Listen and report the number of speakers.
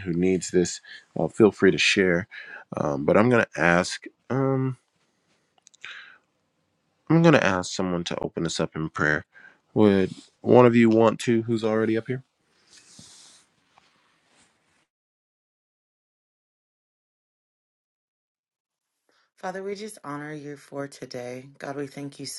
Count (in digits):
2